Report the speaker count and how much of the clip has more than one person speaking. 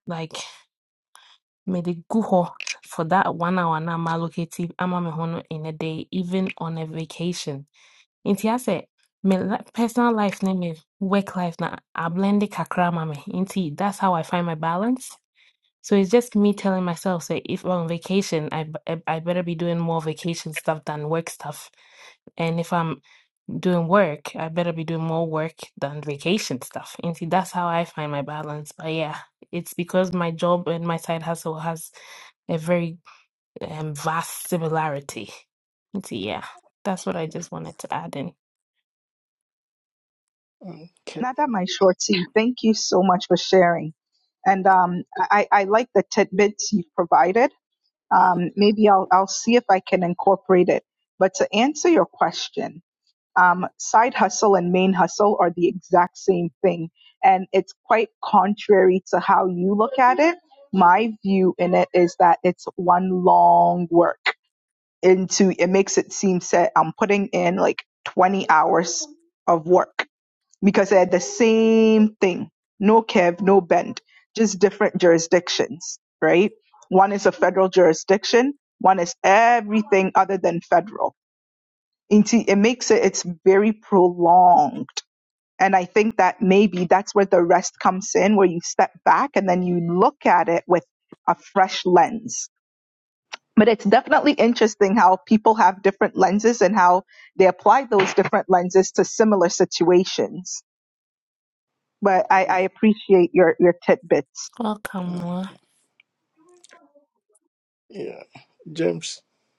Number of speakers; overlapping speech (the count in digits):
3, under 1%